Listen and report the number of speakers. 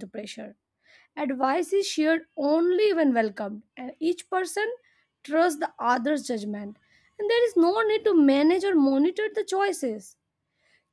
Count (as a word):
one